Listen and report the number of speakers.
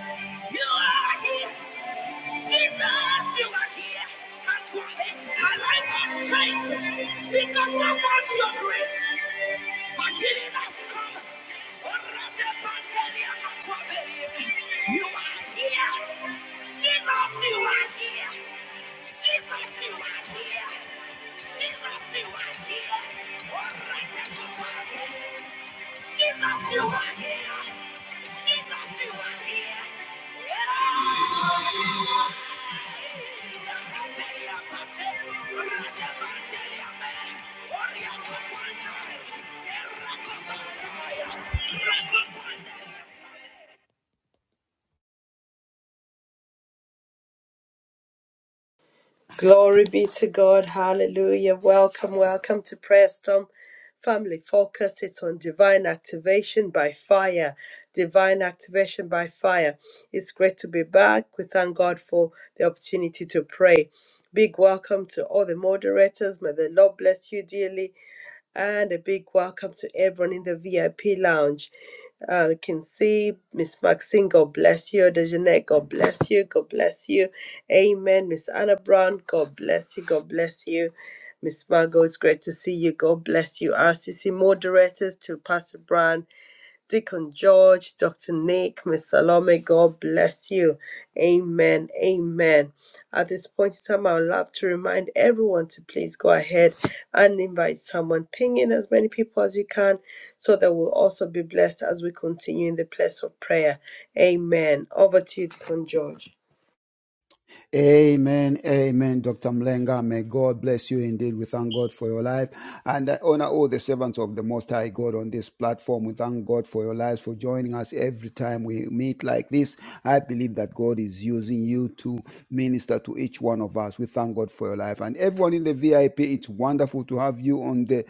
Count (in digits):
3